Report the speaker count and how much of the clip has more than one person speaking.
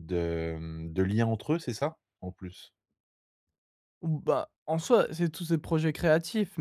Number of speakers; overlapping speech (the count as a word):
two, no overlap